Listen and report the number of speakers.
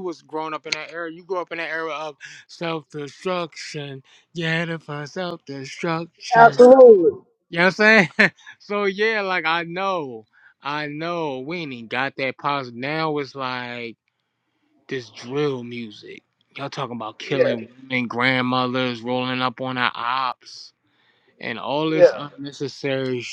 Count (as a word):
two